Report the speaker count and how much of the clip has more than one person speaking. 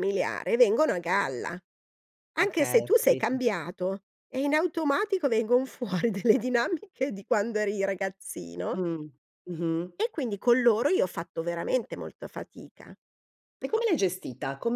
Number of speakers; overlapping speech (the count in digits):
2, about 7%